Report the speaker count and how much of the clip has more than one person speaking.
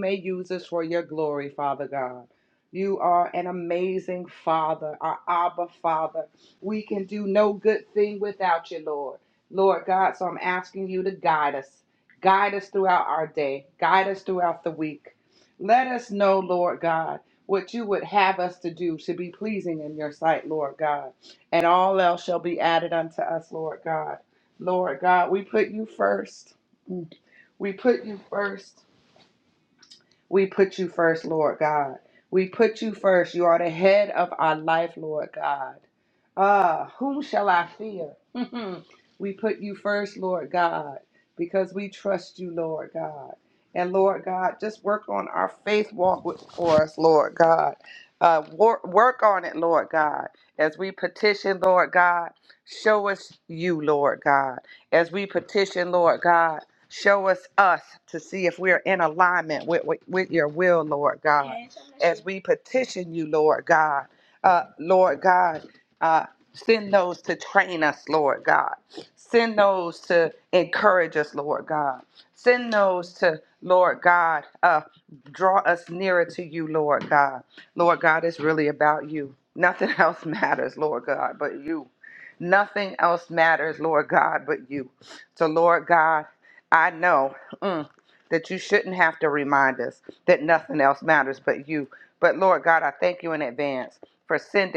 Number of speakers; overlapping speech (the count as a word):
one, no overlap